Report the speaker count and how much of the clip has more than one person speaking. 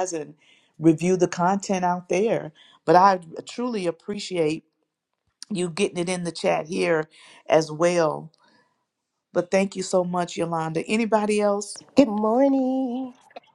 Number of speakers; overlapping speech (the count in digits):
2, no overlap